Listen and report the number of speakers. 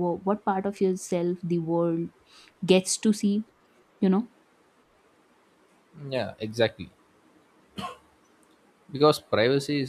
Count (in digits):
2